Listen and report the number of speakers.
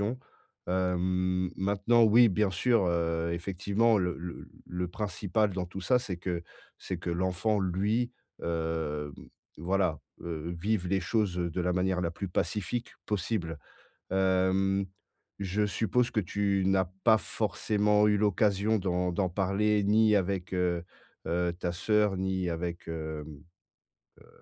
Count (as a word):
one